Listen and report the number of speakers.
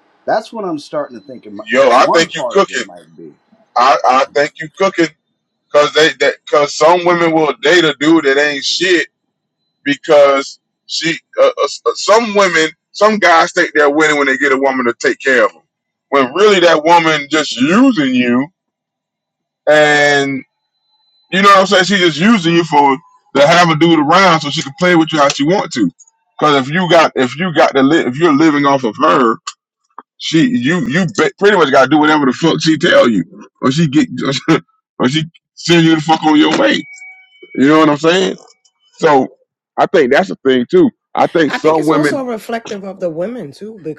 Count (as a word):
three